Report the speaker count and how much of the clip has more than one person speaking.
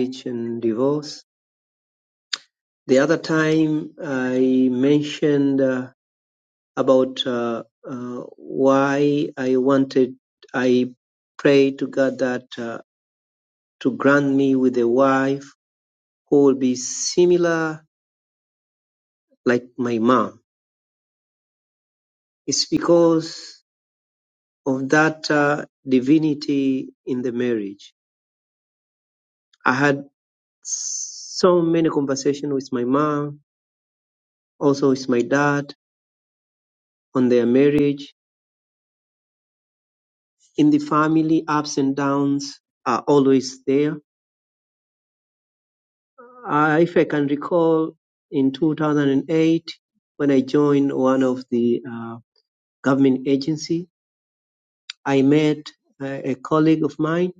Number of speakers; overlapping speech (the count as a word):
one, no overlap